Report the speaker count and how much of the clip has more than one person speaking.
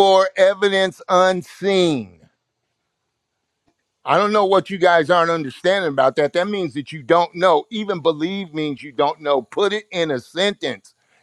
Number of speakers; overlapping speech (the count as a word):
one, no overlap